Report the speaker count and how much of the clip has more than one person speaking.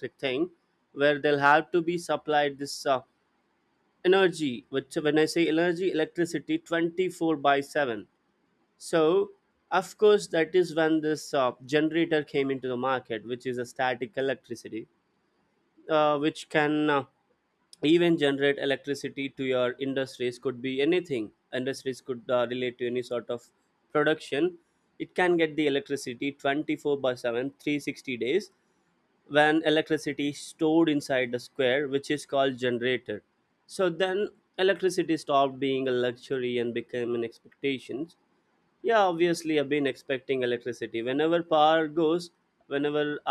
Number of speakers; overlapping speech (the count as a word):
one, no overlap